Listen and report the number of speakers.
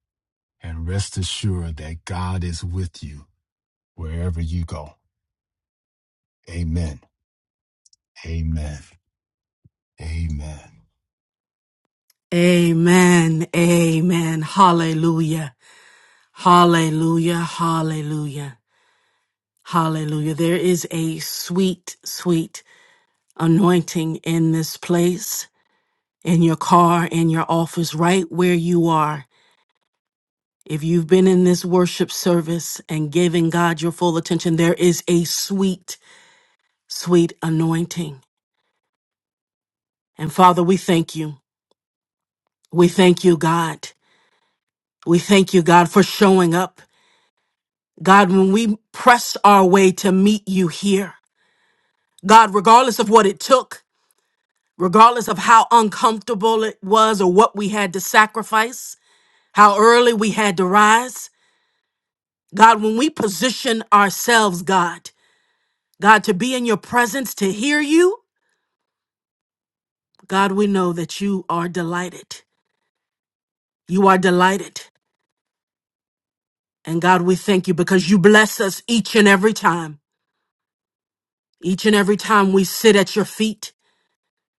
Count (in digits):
2